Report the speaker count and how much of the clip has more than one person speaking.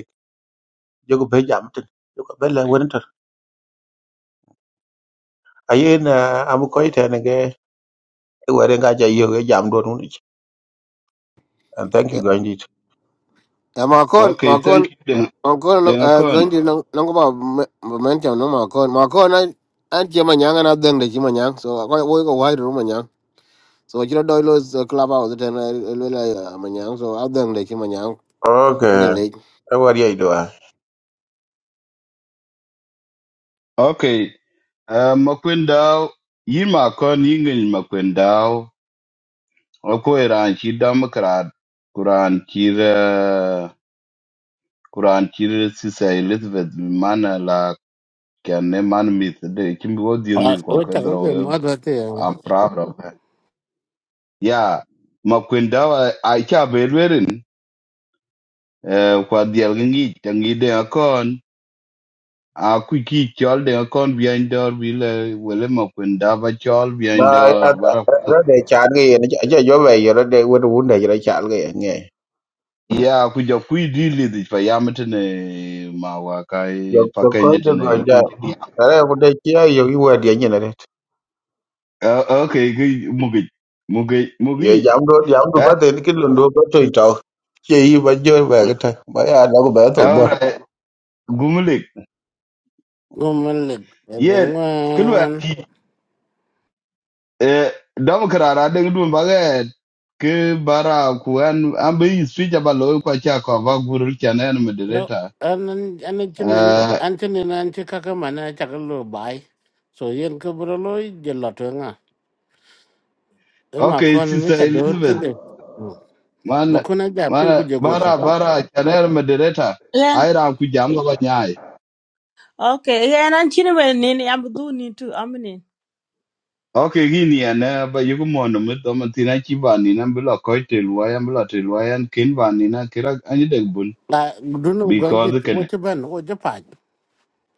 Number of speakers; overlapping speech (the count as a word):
five, about 7%